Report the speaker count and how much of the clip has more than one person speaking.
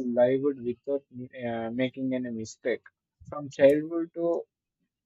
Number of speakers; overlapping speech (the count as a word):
one, no overlap